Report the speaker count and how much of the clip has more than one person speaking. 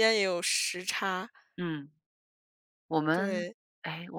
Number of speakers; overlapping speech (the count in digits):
2, about 8%